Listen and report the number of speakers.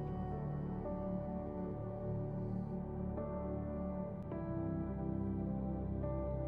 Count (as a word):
zero